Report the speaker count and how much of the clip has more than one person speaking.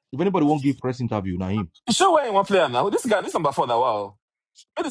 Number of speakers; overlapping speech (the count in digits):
2, no overlap